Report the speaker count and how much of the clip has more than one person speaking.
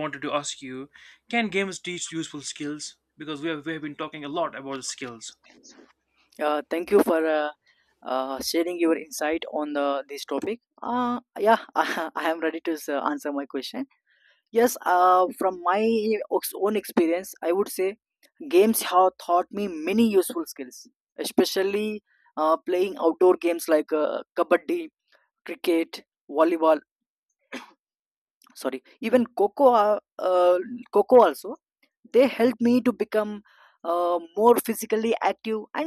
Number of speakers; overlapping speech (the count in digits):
2, no overlap